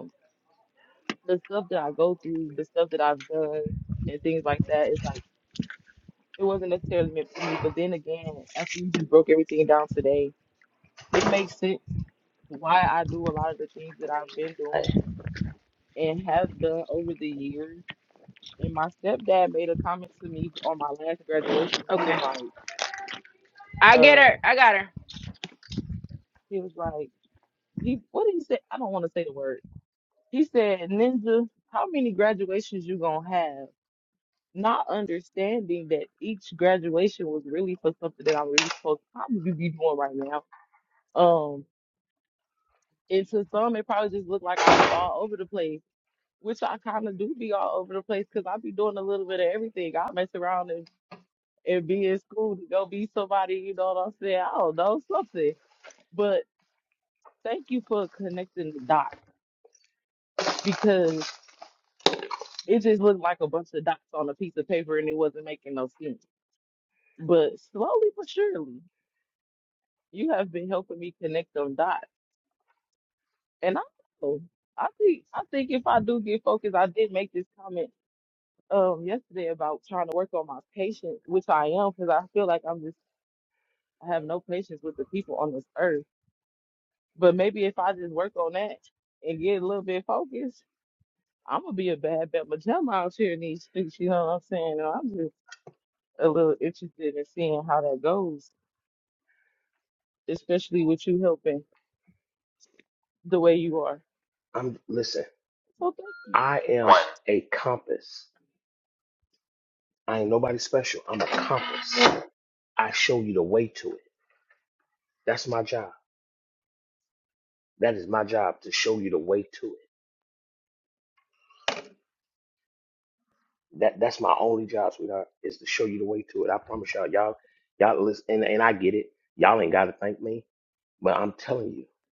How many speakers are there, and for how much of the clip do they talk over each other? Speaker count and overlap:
3, about 1%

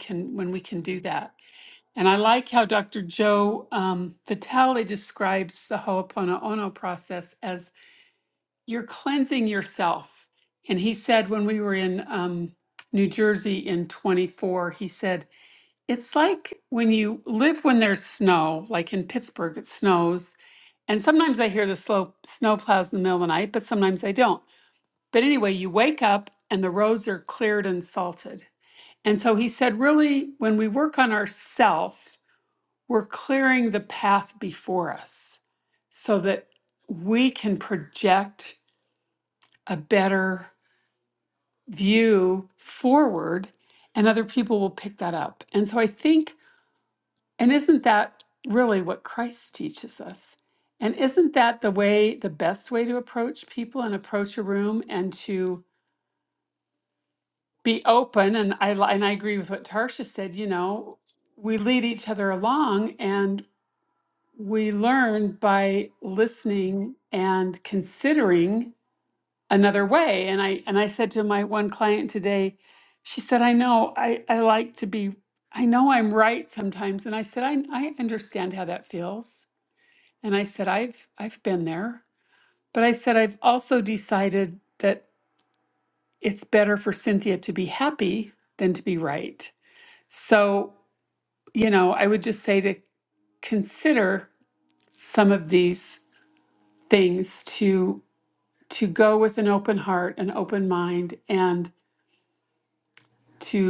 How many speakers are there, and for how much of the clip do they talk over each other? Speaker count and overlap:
1, no overlap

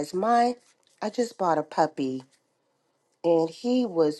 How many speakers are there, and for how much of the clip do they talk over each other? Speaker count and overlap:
1, no overlap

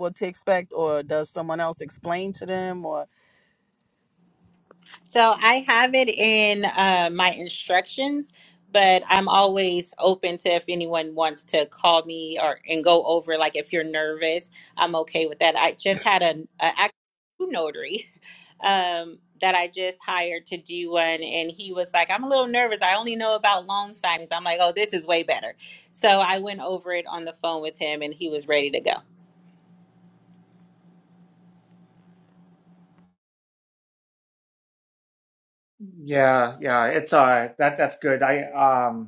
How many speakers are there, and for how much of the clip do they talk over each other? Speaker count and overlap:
3, no overlap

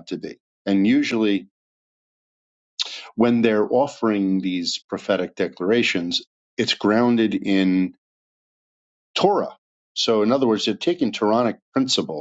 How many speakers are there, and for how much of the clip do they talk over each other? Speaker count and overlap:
1, no overlap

